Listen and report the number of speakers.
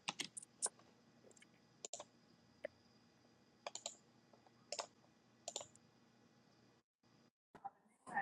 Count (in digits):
0